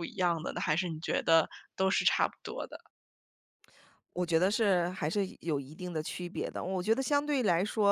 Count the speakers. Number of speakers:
two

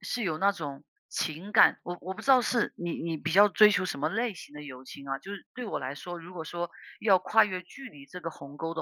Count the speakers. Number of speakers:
one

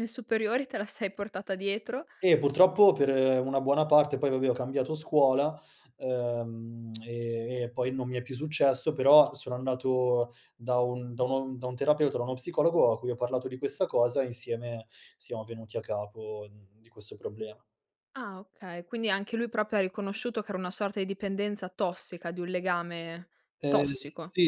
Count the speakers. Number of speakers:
two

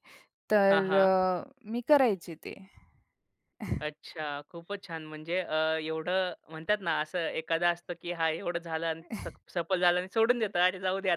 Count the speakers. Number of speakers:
two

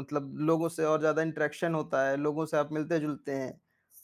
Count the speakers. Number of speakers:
one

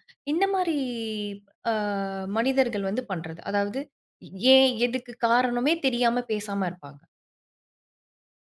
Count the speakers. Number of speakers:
one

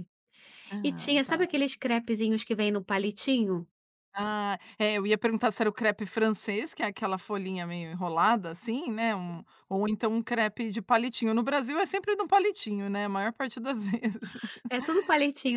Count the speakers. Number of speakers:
two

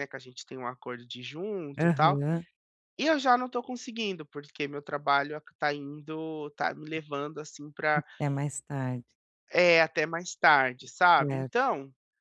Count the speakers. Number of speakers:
two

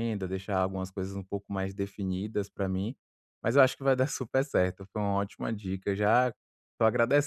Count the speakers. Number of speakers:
one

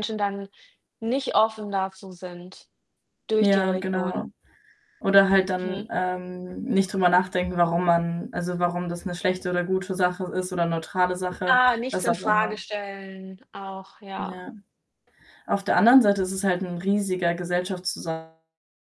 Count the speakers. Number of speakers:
two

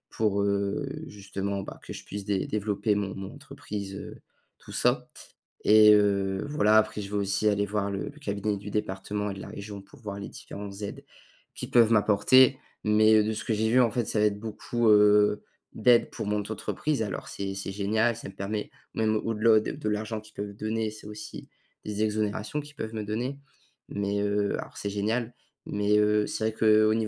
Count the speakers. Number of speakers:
one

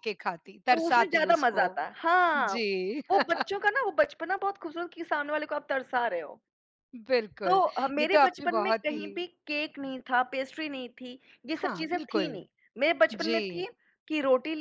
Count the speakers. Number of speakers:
two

